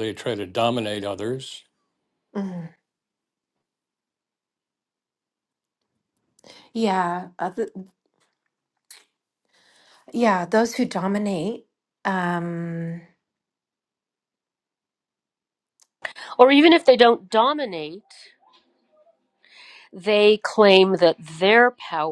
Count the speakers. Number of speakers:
3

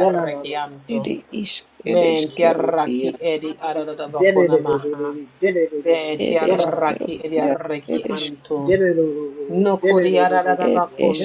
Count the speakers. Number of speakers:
3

